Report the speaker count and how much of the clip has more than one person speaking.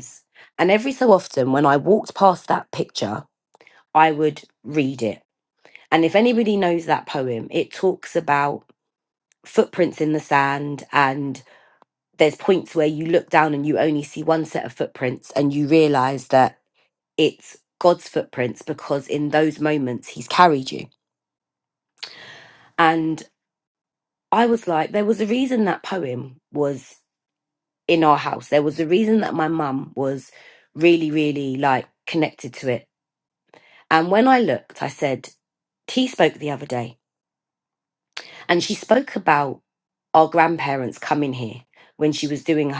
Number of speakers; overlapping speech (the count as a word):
one, no overlap